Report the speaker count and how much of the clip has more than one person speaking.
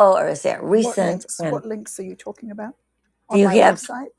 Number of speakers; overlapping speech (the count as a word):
two, about 34%